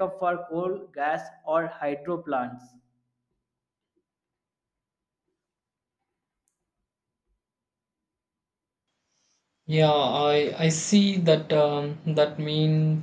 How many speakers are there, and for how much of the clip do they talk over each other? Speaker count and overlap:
2, no overlap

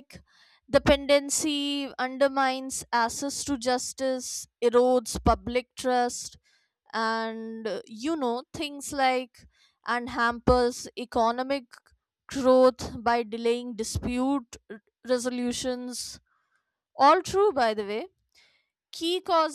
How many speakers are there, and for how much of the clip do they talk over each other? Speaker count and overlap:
1, no overlap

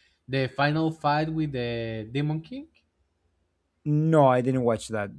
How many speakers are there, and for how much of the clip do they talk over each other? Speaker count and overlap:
2, no overlap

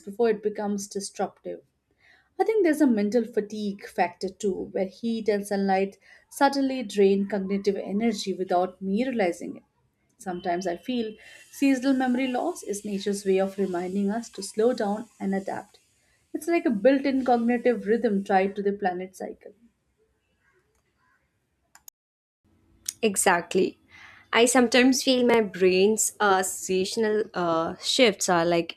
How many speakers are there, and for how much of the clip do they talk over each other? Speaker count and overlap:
2, no overlap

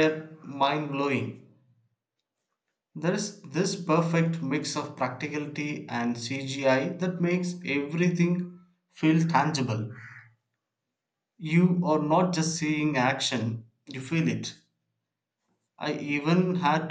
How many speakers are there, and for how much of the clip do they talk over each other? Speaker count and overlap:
1, no overlap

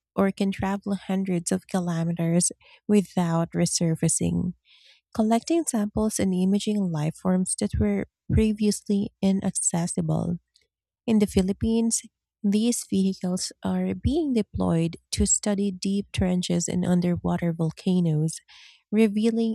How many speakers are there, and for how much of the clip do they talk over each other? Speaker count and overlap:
1, no overlap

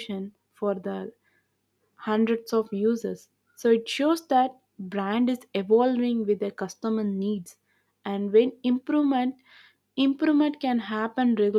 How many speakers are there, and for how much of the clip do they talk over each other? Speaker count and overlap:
1, no overlap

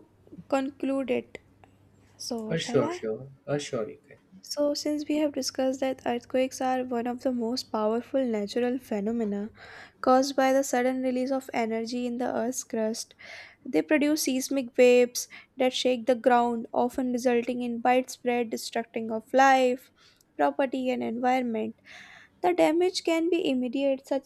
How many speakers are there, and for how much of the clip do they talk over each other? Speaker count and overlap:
2, about 2%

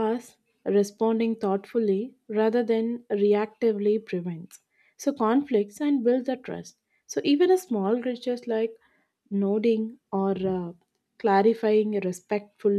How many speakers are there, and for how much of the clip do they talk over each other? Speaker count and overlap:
1, no overlap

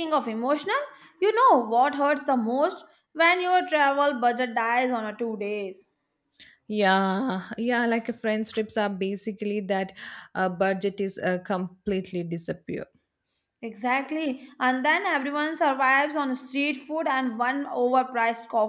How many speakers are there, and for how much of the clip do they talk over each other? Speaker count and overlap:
2, no overlap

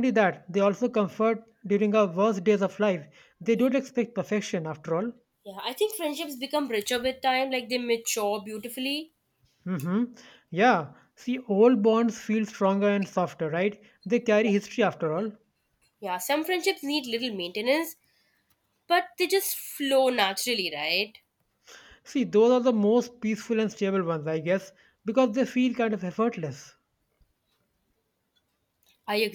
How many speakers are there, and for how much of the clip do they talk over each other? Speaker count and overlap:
2, about 1%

